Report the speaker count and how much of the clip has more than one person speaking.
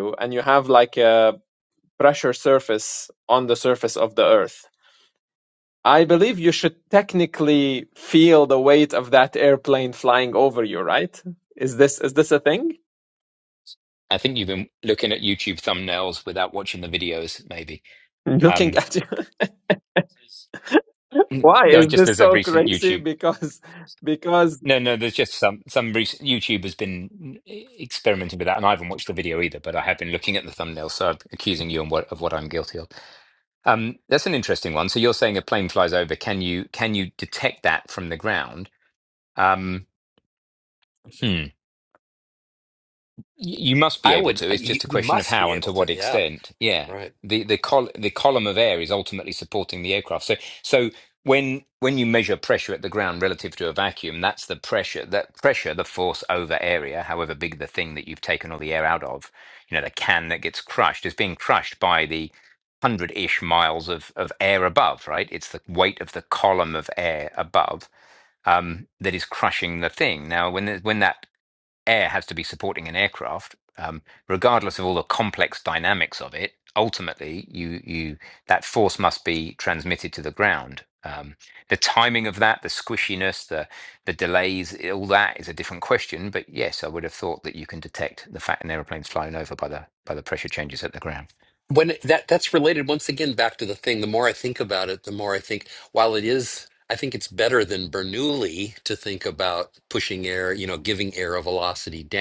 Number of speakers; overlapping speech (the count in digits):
3, about 4%